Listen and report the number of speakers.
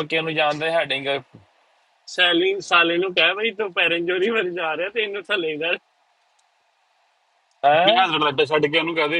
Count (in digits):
3